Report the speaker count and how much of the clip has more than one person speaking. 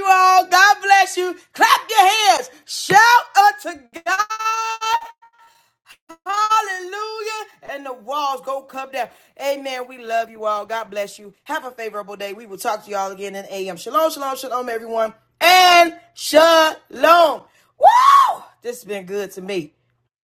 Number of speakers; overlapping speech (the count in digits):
1, no overlap